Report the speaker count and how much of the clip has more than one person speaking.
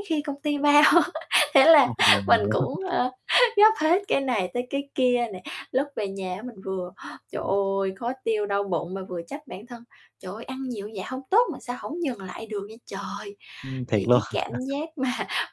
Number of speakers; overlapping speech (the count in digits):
2, about 5%